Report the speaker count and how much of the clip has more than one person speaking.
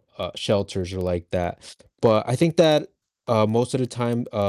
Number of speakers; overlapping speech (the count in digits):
1, no overlap